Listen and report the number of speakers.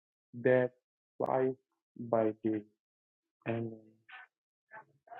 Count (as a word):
one